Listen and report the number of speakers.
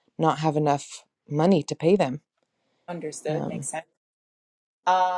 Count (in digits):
2